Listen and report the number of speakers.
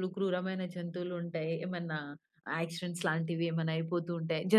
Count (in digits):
1